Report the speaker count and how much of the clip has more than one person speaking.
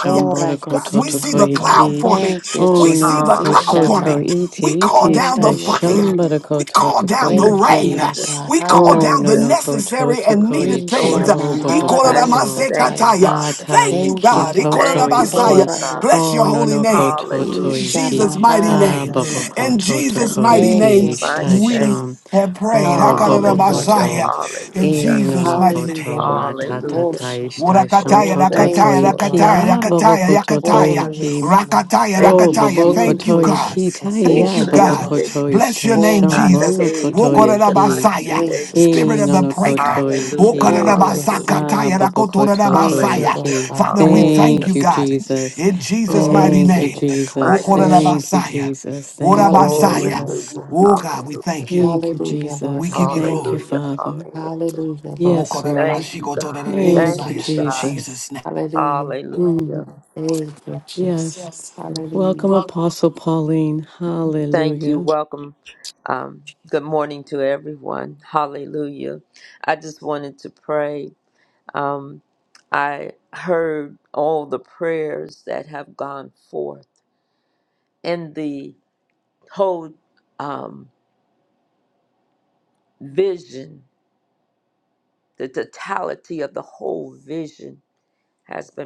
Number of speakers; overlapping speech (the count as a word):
four, about 62%